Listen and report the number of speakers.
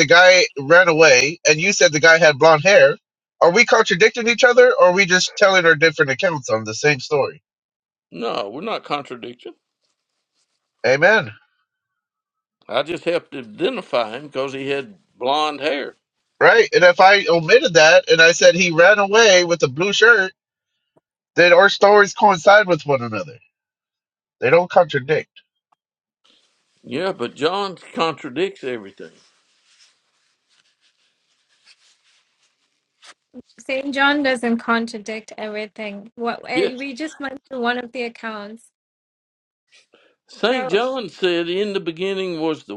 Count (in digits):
3